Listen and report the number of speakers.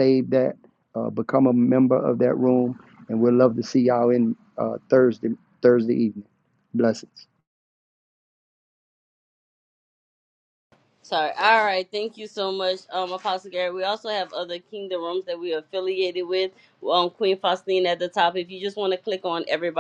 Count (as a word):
two